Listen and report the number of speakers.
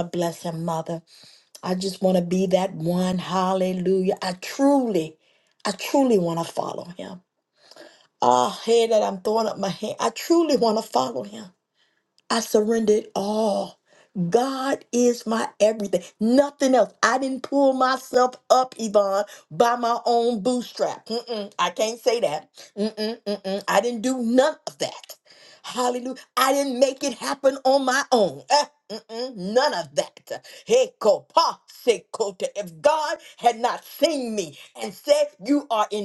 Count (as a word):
one